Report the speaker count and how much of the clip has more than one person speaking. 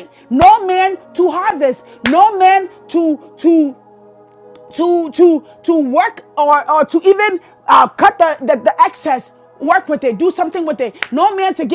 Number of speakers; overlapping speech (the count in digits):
1, no overlap